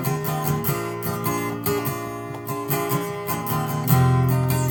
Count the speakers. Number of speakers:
0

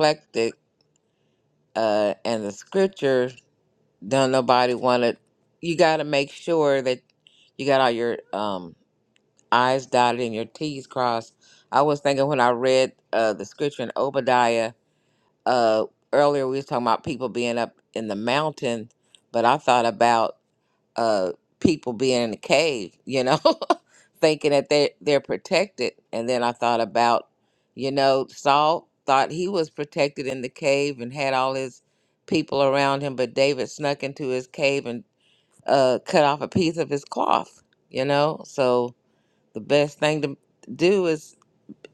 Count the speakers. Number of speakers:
1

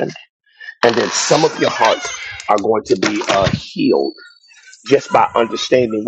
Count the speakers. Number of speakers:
1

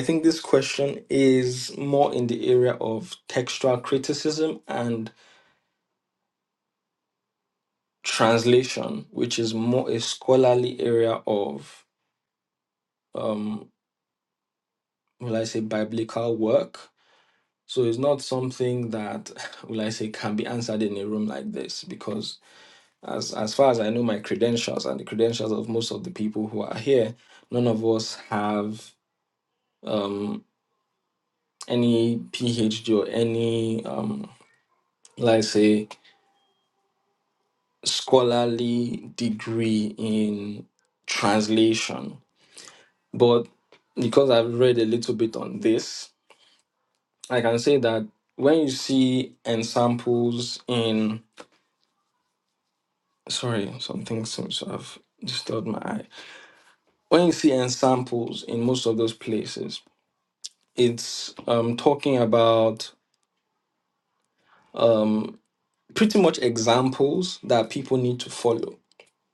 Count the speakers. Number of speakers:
1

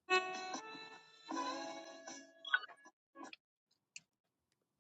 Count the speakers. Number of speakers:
0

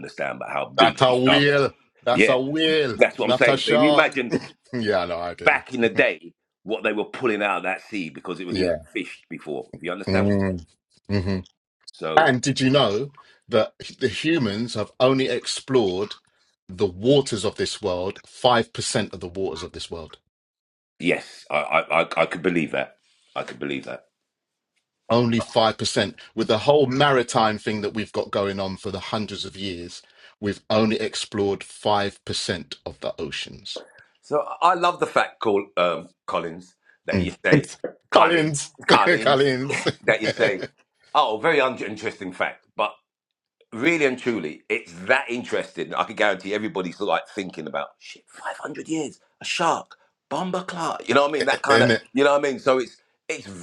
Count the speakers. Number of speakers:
2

